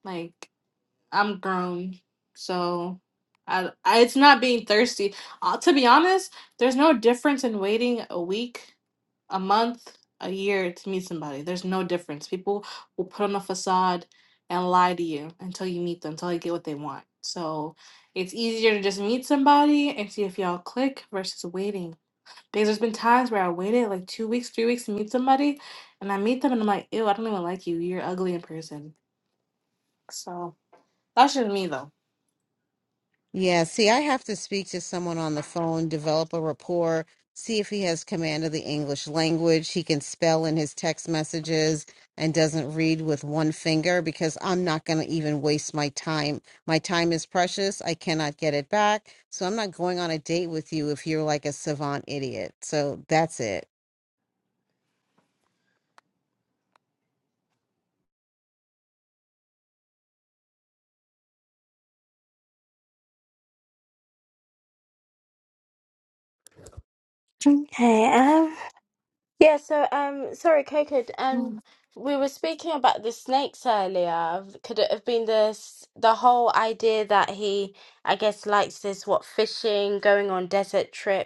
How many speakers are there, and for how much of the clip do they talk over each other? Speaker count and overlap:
3, no overlap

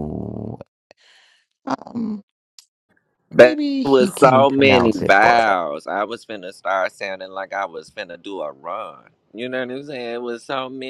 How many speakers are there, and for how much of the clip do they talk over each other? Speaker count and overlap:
2, about 20%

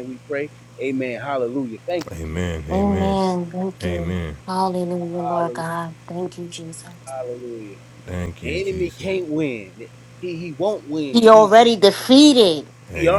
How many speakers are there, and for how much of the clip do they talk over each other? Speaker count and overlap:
3, about 18%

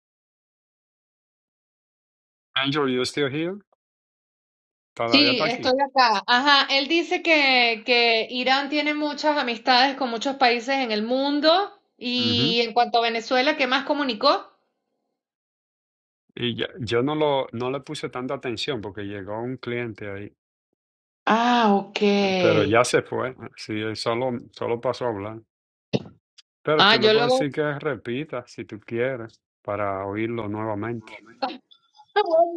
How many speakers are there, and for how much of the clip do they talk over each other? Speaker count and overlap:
2, about 5%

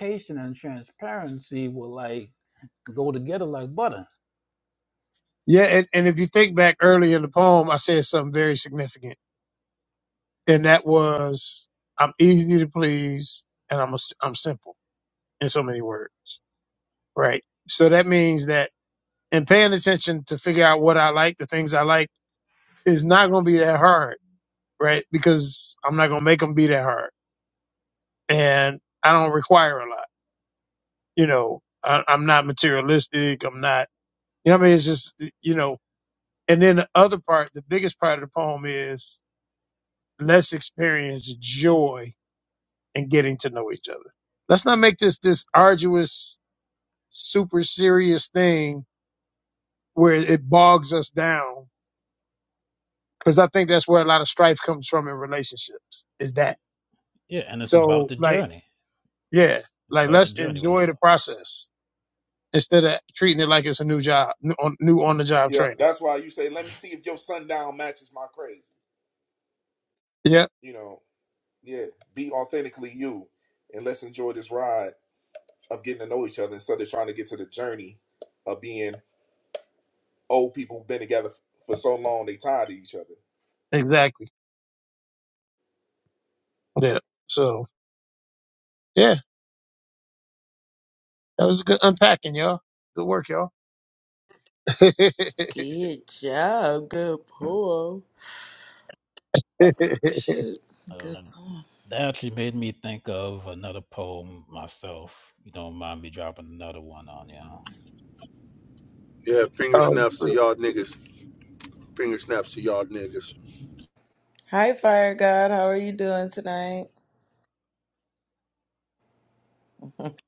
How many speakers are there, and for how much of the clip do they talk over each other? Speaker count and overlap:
5, about 2%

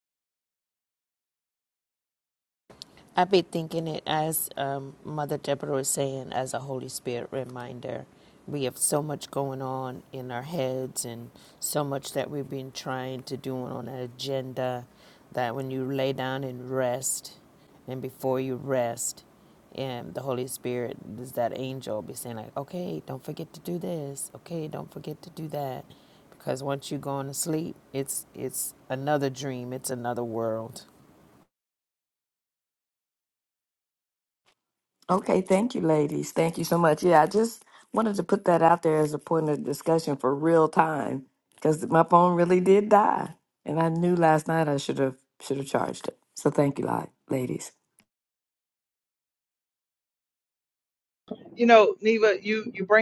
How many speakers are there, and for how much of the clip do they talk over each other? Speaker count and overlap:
3, no overlap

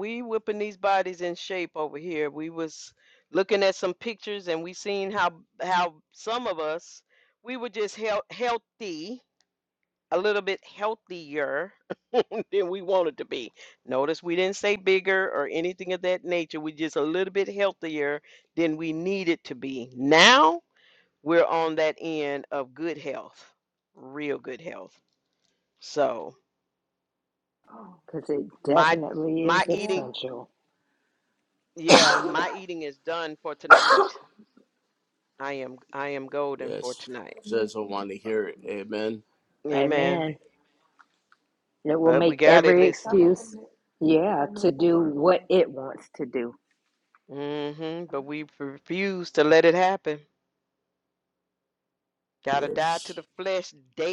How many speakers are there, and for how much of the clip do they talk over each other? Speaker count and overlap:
3, about 6%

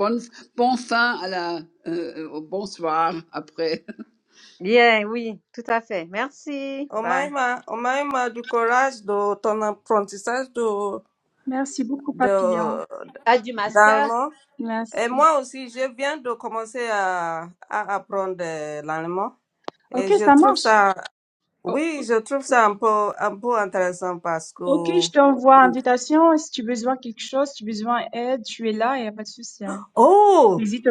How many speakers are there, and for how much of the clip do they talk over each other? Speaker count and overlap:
4, about 8%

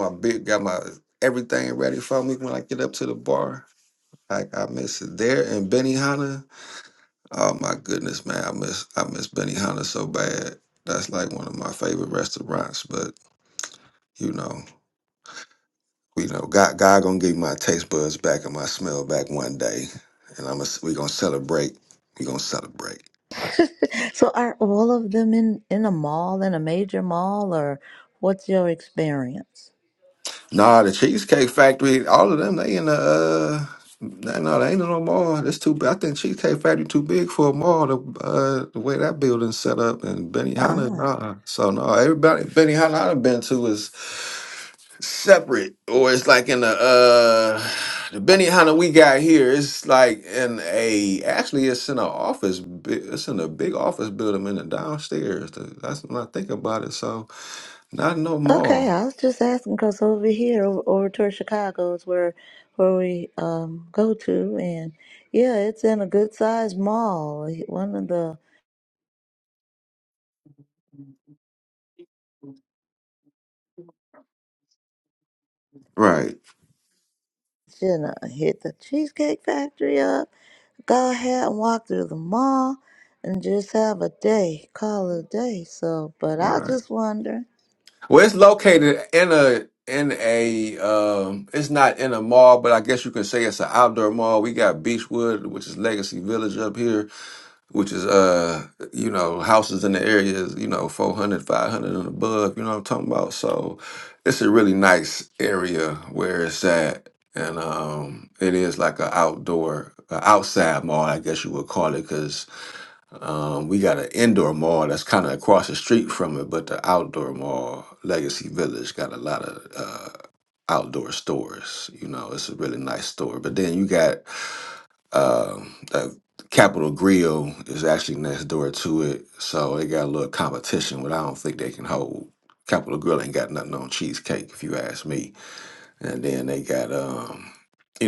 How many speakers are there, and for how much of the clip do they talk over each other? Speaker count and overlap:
2, about 1%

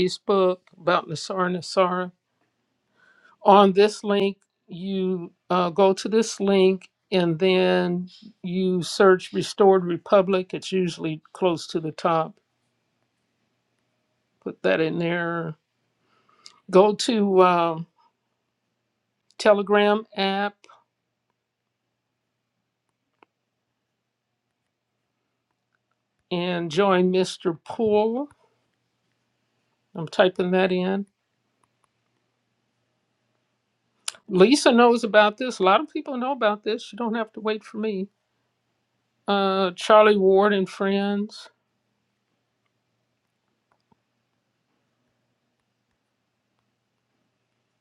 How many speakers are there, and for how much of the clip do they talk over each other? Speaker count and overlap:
1, no overlap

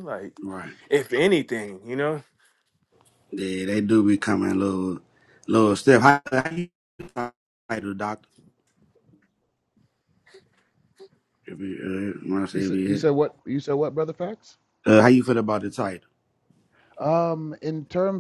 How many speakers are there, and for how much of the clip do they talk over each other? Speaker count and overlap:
3, about 3%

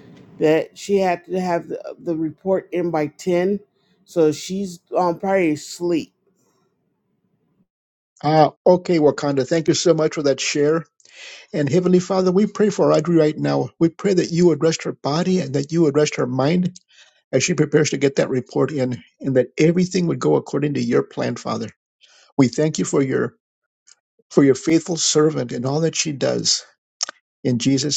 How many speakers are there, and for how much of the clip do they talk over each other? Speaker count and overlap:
2, no overlap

